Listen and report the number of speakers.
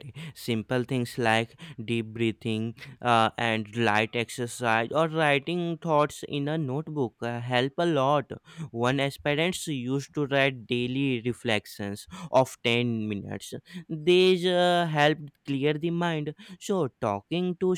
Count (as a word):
one